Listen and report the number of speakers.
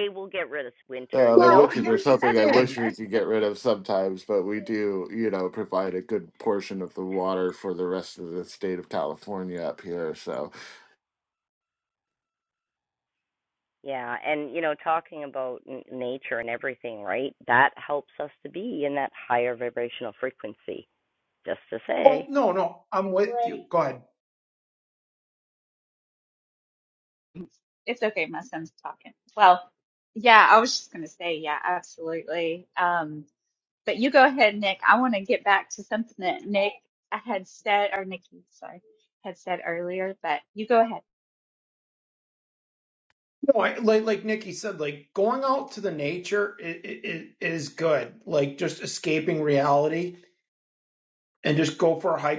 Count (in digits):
4